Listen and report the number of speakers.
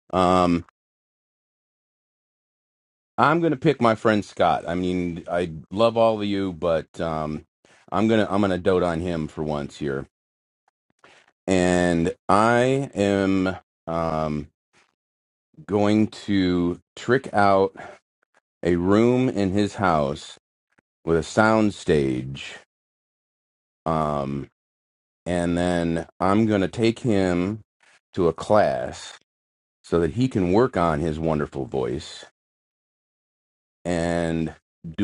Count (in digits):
1